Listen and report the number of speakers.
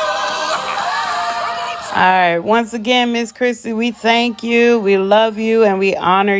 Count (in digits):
1